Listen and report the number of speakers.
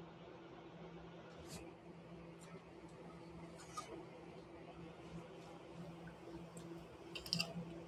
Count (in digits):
0